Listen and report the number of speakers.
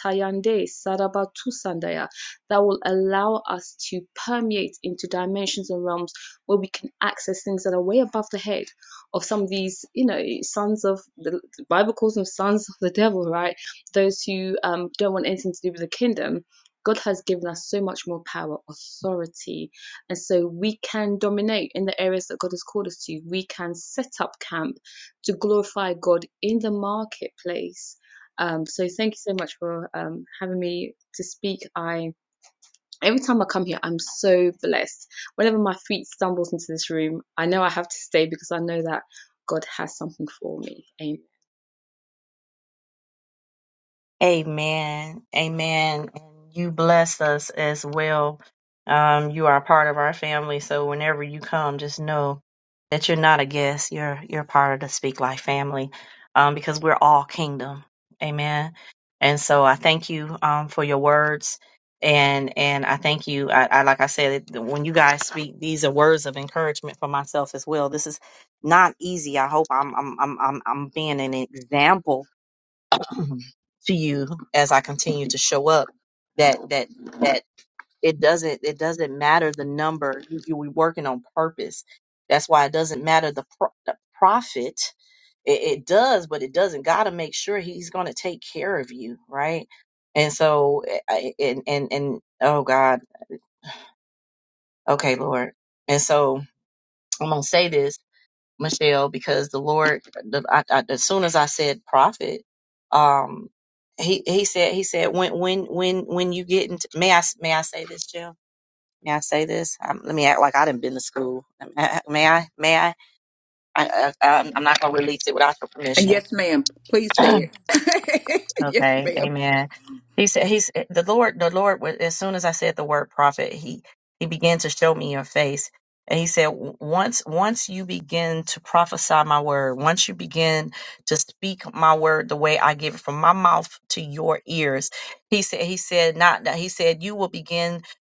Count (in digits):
3